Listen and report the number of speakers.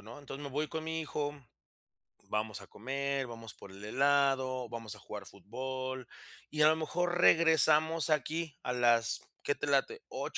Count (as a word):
one